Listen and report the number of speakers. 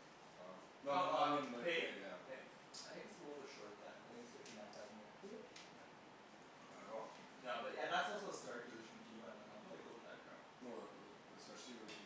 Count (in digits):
2